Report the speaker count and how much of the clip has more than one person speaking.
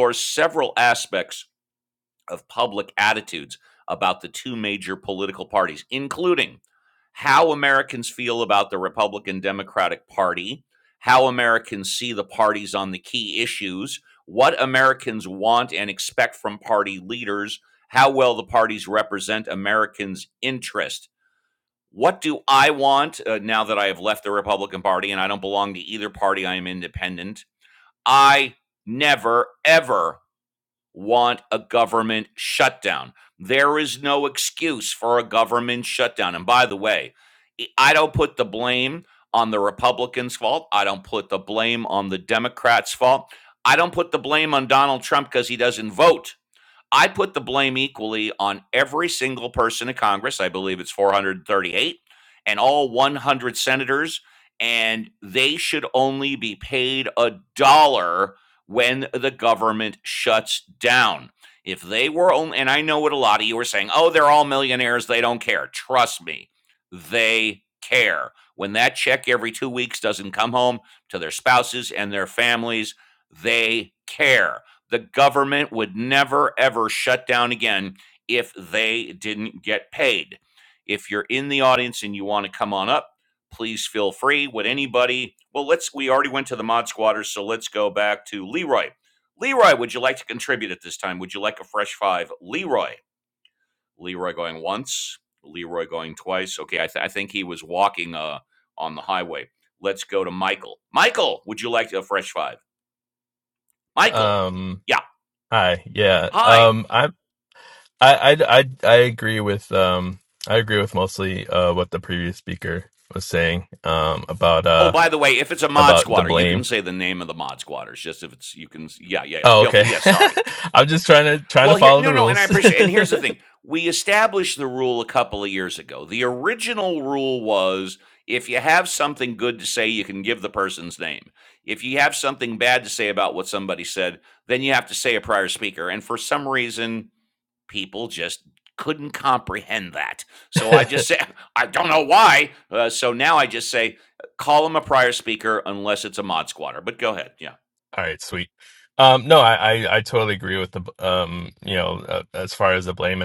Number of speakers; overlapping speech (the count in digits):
2, about 2%